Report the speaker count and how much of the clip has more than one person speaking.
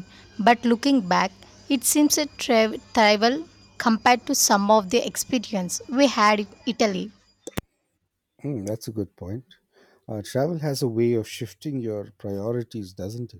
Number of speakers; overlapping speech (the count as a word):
two, no overlap